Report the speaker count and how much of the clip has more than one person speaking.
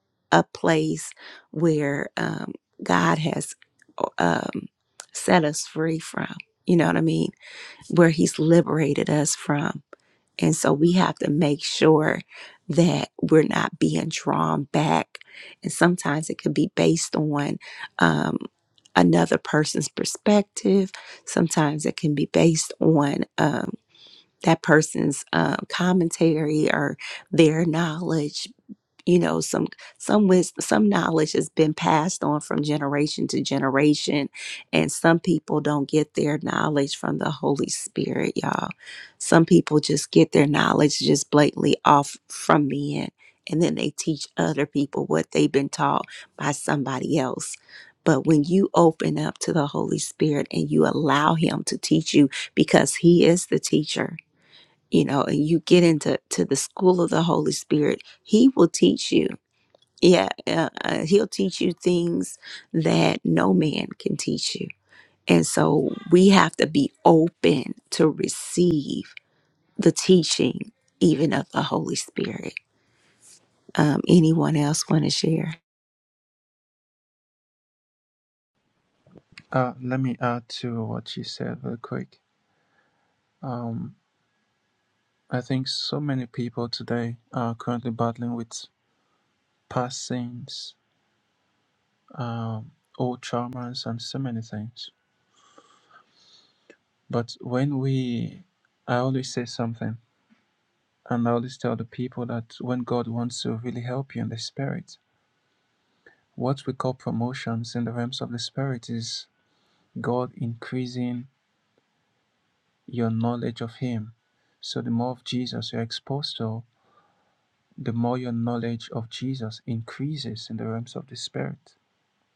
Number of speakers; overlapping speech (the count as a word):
two, no overlap